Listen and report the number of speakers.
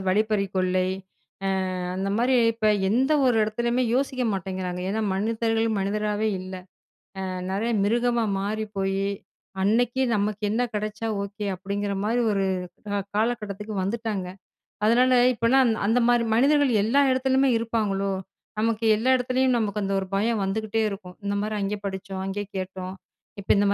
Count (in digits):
1